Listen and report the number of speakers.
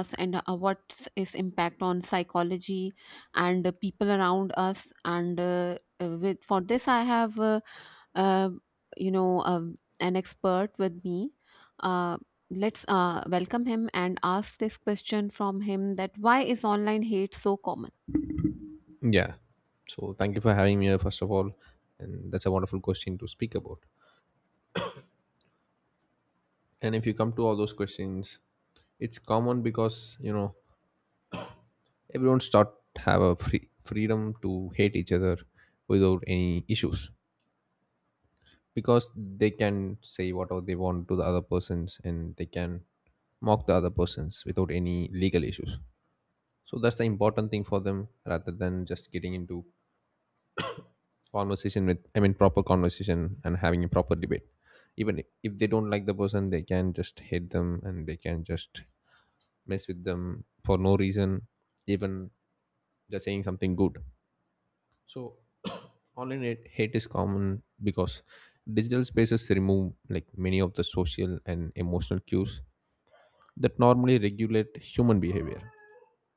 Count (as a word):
two